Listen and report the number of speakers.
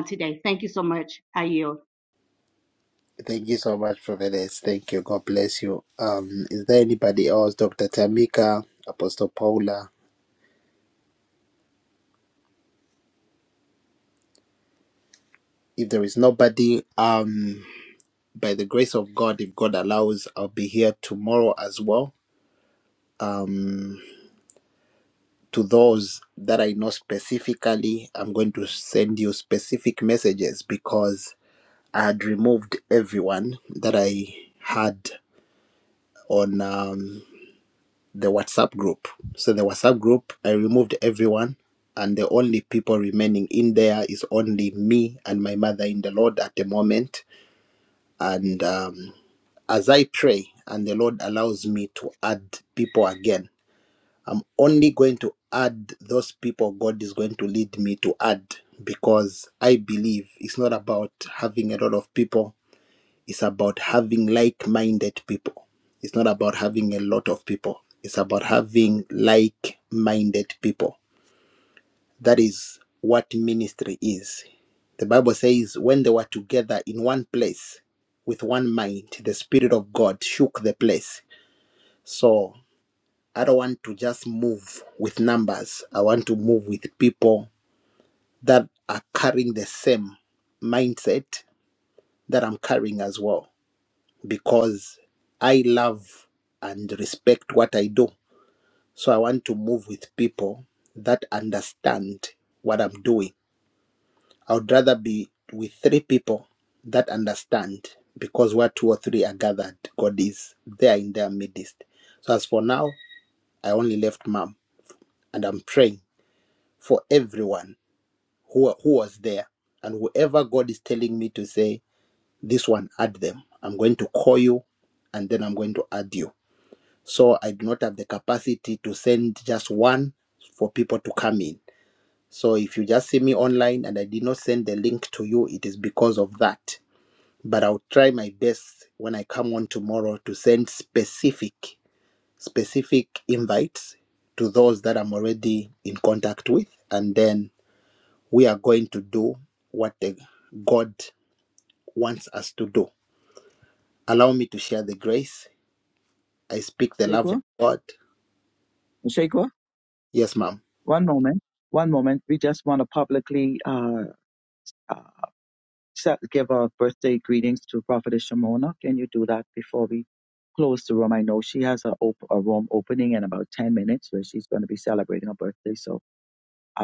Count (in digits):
3